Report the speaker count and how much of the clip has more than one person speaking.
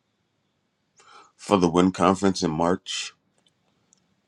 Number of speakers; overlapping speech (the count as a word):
one, no overlap